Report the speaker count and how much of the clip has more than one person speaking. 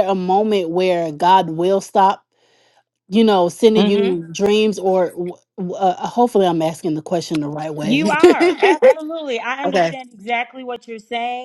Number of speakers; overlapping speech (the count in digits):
2, about 9%